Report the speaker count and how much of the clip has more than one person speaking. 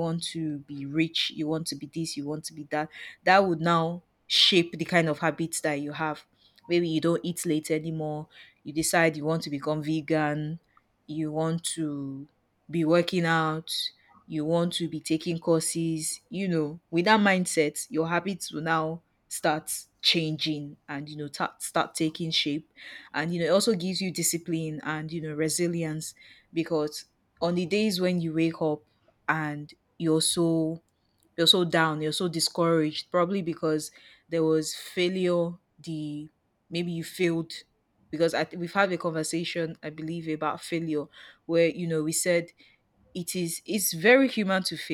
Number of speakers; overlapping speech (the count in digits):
1, no overlap